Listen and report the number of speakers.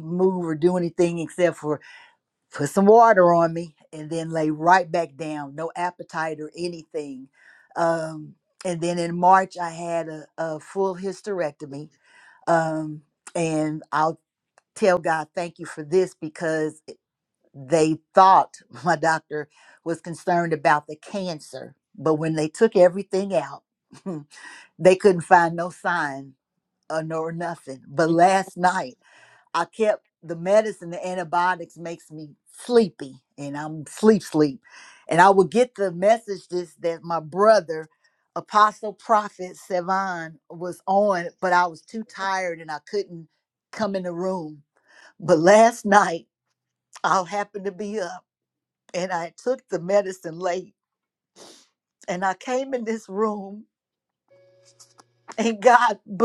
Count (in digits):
1